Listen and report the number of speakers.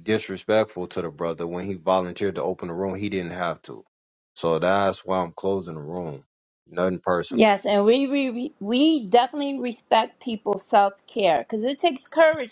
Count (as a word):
two